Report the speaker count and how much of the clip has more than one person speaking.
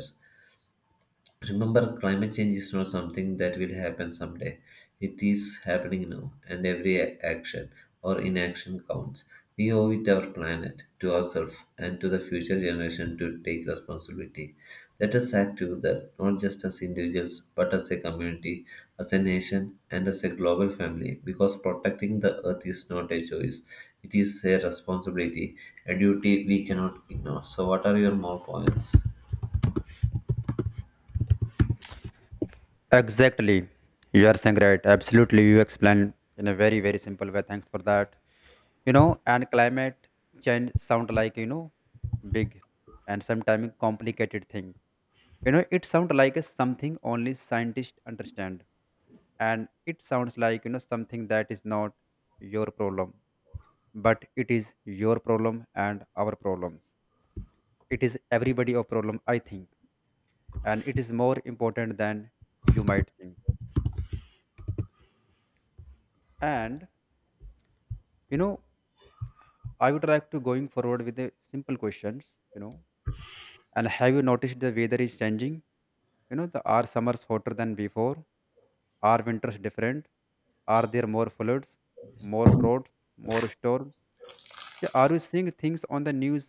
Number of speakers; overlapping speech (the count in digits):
2, no overlap